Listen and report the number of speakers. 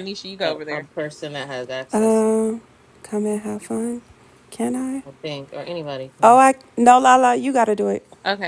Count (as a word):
three